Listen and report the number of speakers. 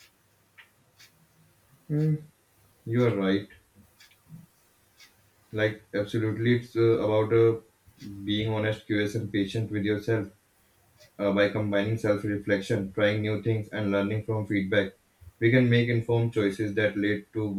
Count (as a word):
one